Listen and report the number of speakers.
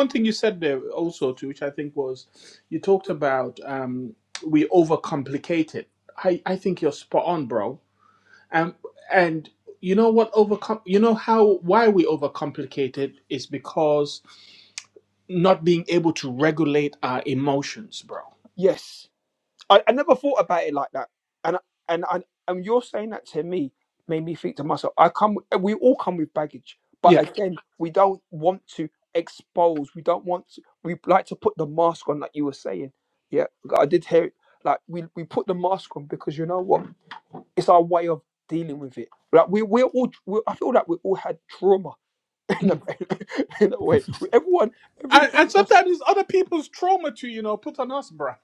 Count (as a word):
two